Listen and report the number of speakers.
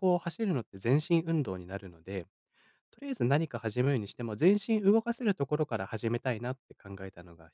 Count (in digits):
1